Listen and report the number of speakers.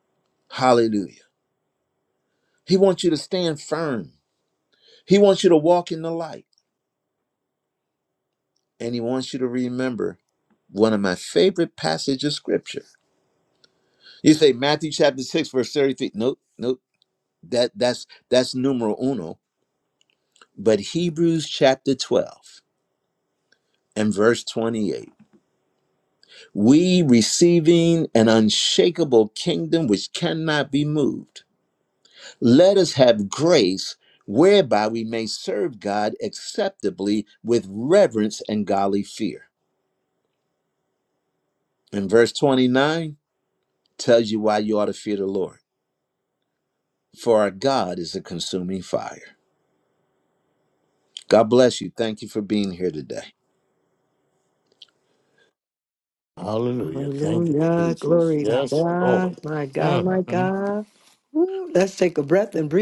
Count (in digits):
3